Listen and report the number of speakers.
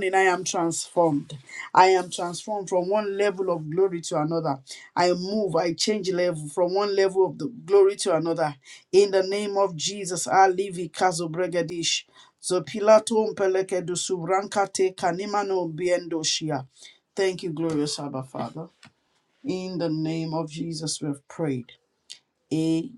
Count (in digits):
1